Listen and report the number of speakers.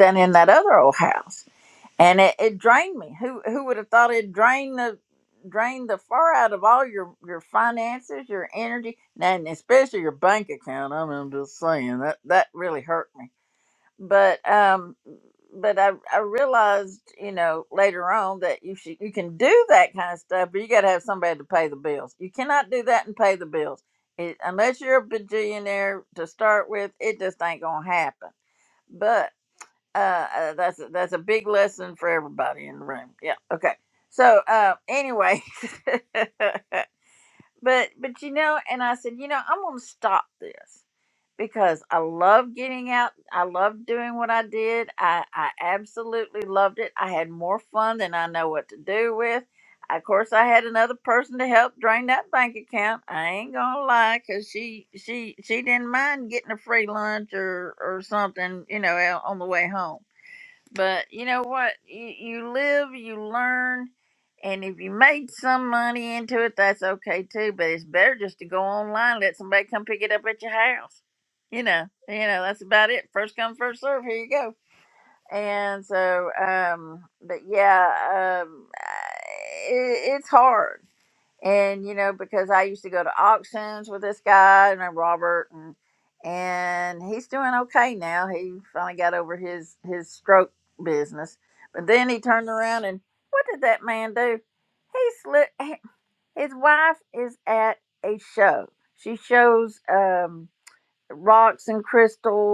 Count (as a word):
one